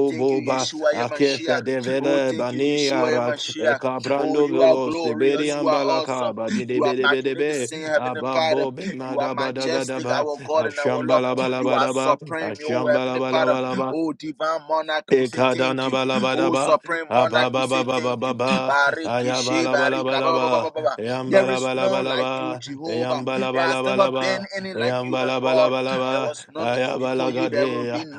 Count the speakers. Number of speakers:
2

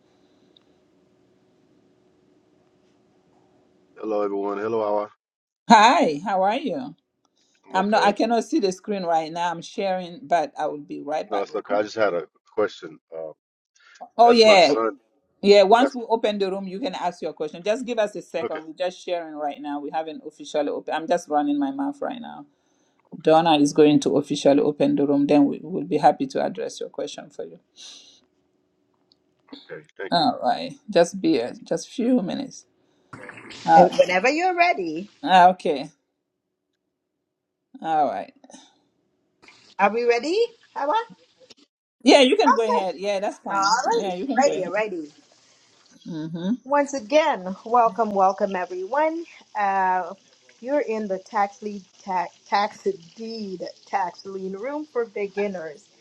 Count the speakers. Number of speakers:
3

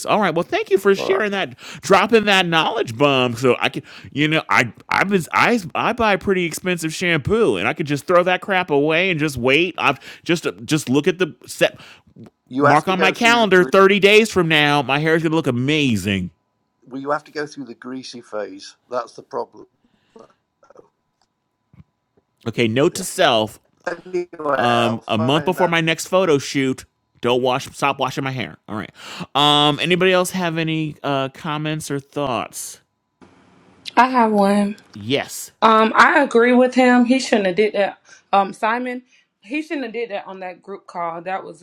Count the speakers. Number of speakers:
3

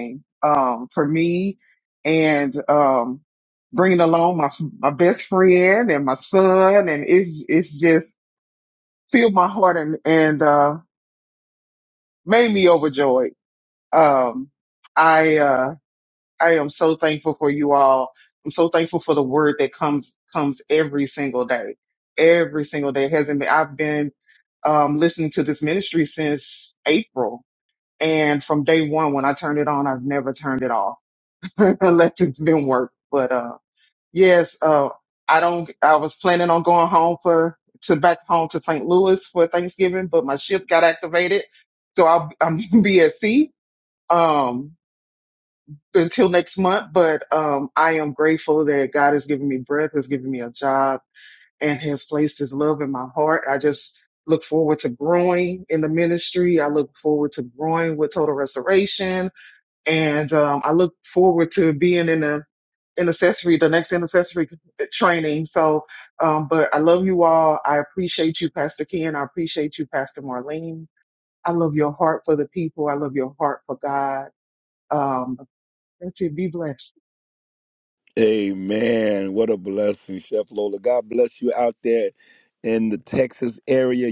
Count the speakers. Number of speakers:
2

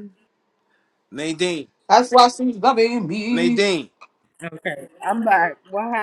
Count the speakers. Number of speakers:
3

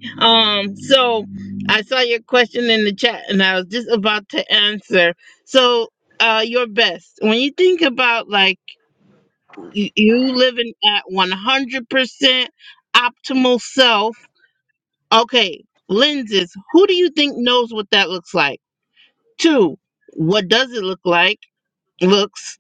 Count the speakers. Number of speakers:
1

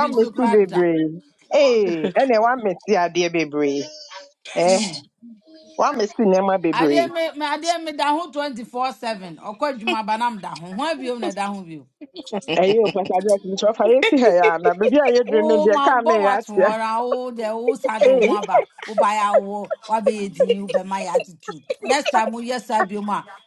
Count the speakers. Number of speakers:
2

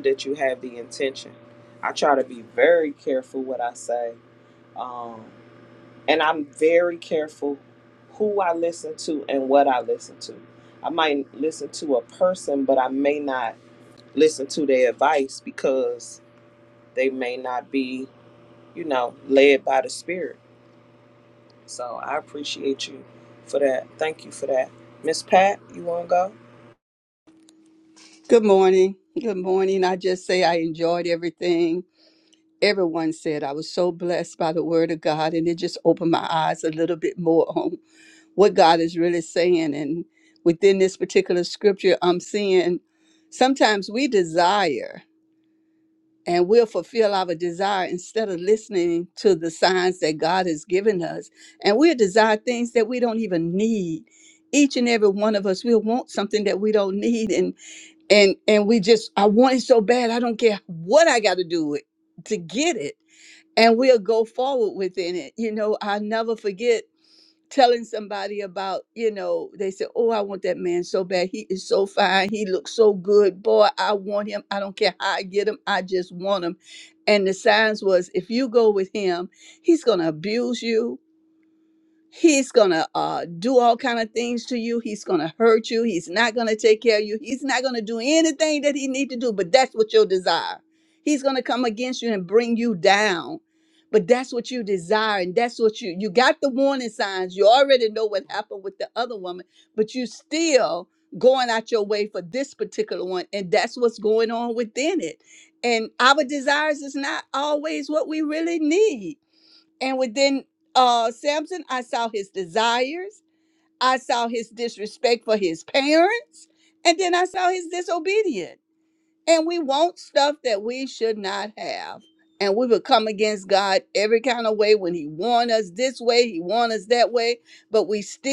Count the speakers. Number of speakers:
2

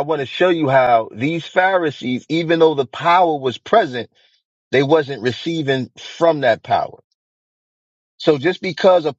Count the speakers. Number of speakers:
1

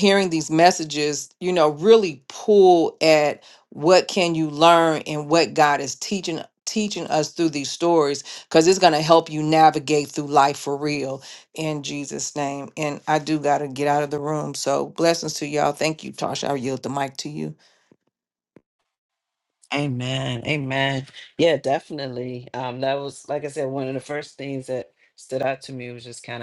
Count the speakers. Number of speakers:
2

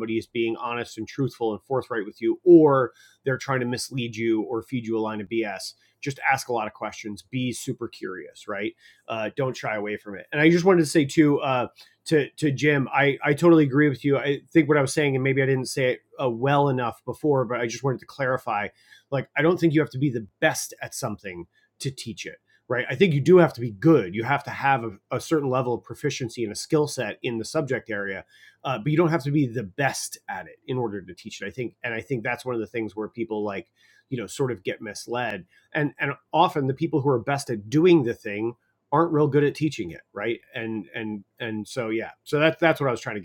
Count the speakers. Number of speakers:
1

